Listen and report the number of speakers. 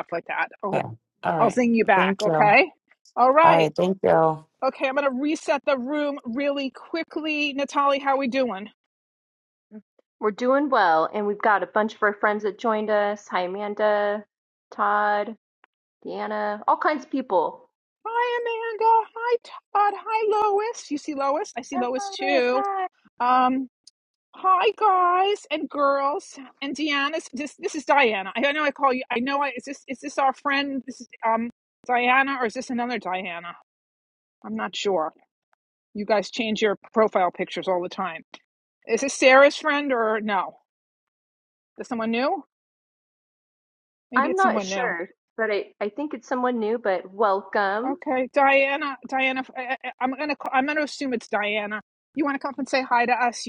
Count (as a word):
three